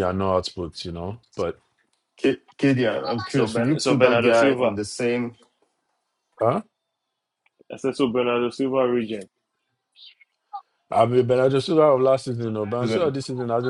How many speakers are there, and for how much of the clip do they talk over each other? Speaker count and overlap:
three, about 12%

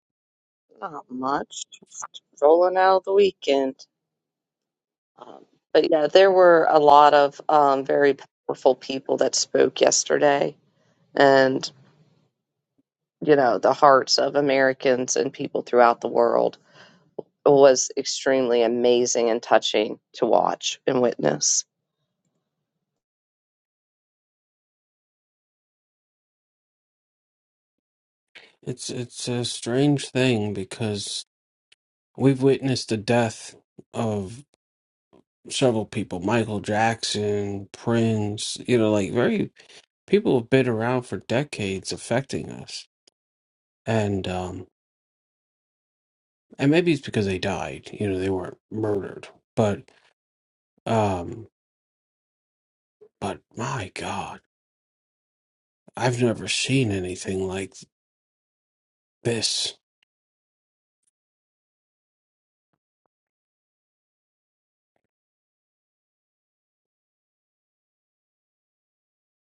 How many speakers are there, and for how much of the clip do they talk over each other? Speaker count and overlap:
two, no overlap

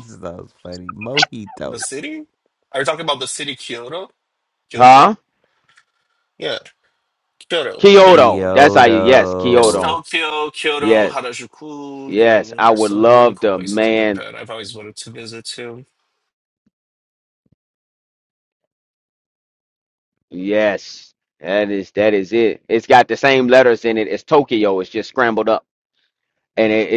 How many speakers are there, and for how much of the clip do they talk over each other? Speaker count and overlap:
three, about 17%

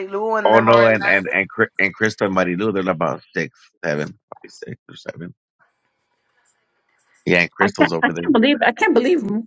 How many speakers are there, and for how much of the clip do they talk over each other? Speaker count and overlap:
three, about 16%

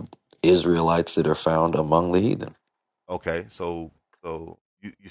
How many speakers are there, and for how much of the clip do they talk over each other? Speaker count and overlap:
two, no overlap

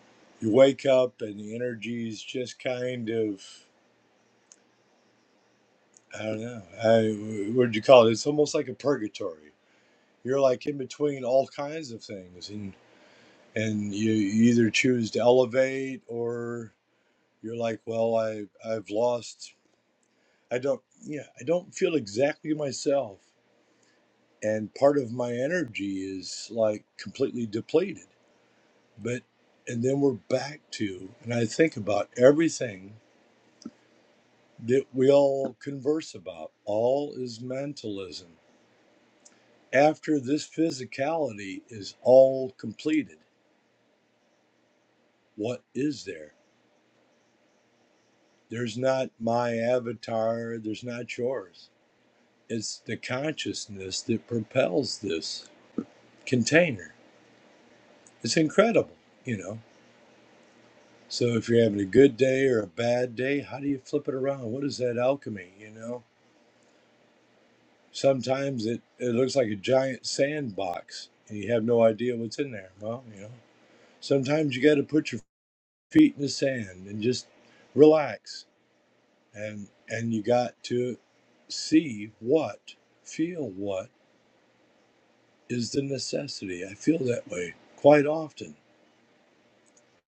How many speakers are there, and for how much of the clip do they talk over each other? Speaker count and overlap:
one, no overlap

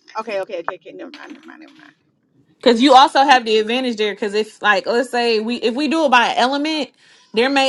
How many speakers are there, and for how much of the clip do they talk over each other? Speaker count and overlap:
two, no overlap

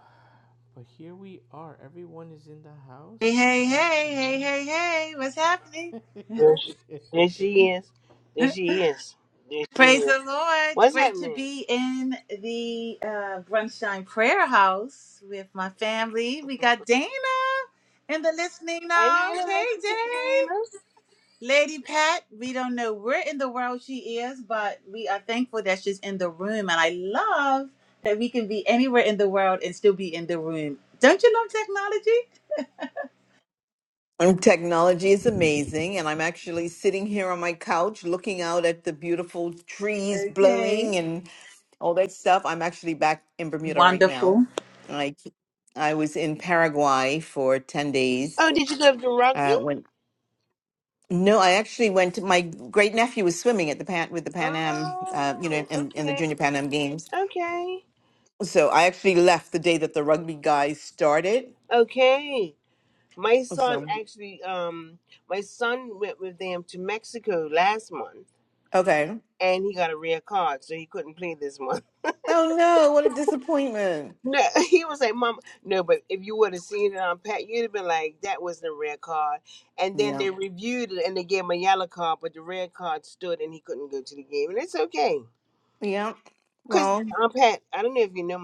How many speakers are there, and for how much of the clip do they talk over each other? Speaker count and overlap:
four, about 9%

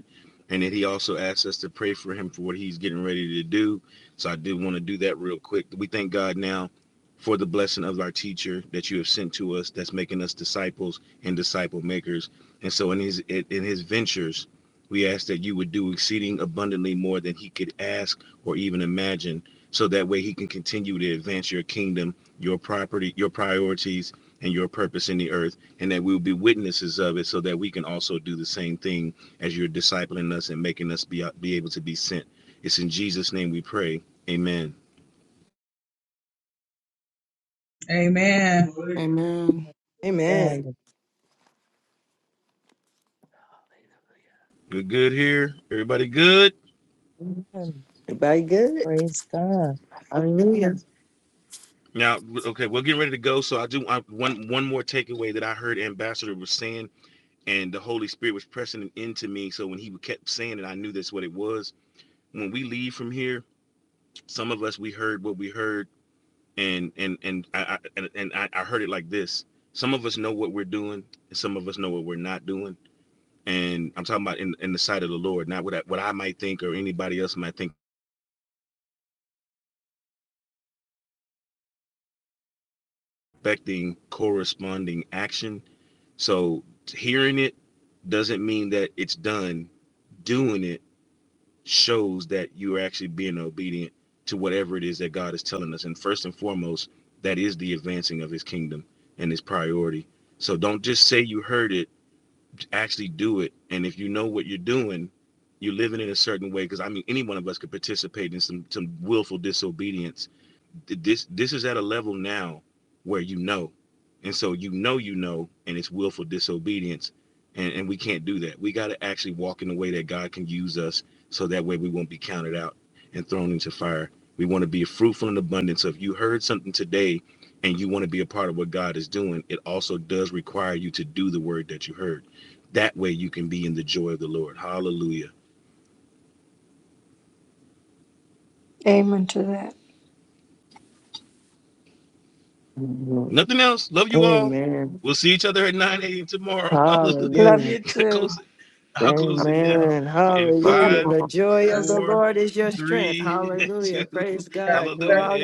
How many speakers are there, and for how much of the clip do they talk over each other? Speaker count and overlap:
six, about 4%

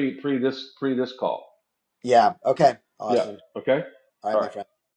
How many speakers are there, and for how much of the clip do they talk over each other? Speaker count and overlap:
two, about 10%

